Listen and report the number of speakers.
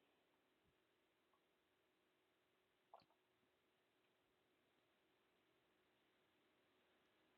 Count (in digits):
0